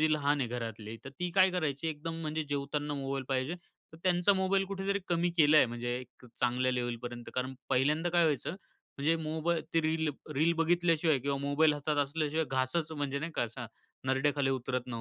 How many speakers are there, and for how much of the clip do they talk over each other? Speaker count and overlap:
1, no overlap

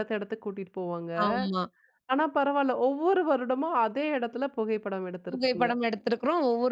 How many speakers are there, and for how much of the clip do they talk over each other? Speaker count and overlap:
2, about 6%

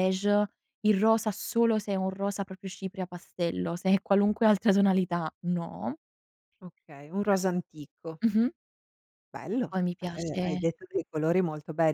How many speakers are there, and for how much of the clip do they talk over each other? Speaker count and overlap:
2, about 5%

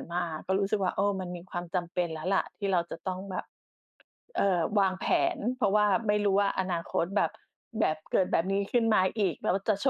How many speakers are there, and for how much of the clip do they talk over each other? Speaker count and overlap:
1, no overlap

